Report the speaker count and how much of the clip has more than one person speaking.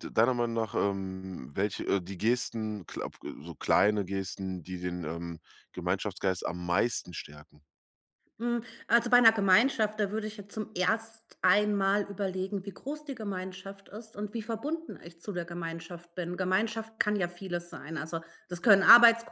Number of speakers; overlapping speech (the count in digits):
2, no overlap